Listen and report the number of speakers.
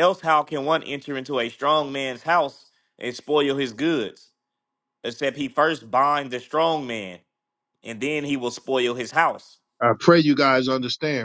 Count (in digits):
2